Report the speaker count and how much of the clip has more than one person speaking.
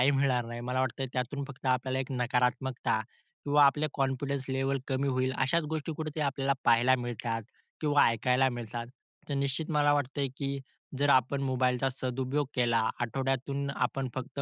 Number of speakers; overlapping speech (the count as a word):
one, no overlap